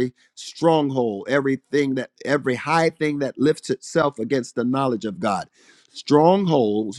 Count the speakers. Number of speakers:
1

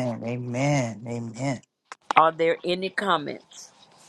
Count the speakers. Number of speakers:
2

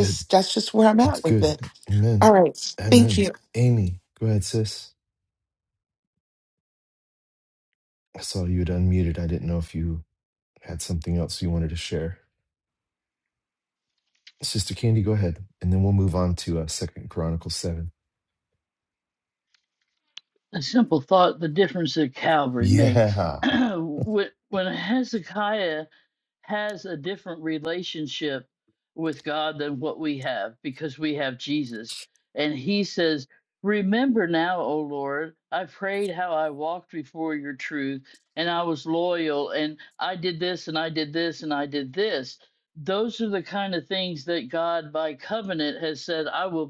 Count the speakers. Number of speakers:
3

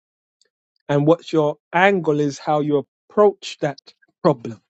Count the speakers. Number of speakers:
1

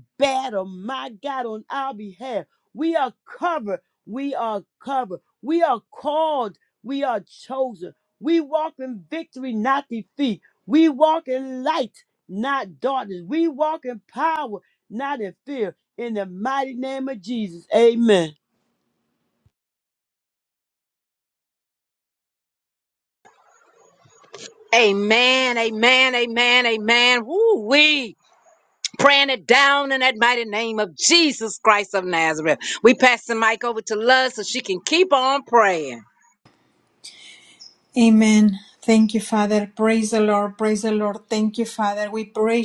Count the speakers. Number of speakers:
3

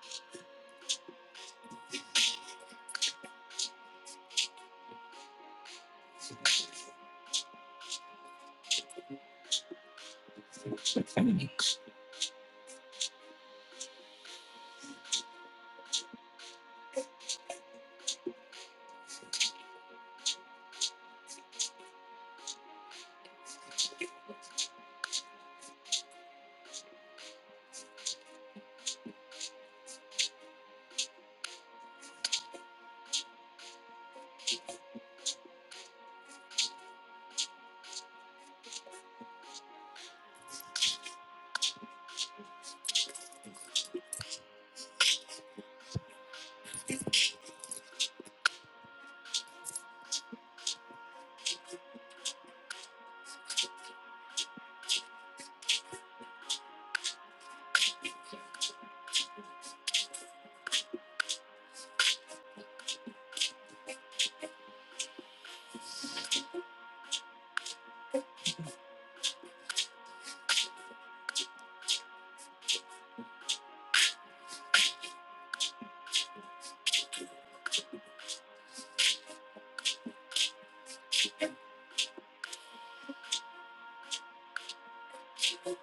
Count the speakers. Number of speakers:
0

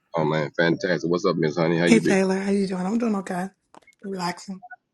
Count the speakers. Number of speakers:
2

